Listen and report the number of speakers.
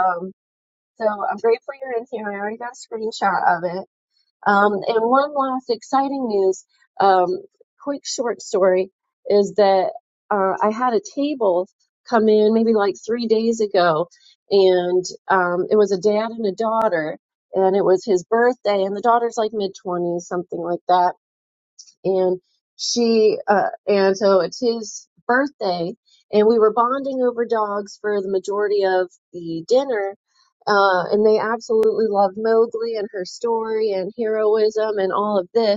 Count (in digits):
1